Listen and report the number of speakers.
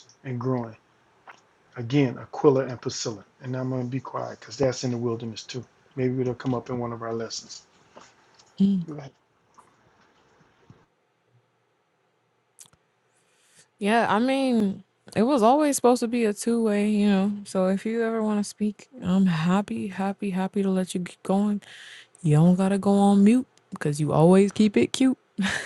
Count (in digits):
2